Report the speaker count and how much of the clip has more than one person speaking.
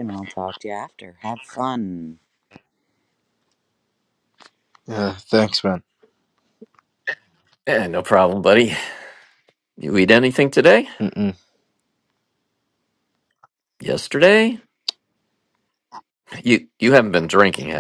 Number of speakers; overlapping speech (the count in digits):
3, no overlap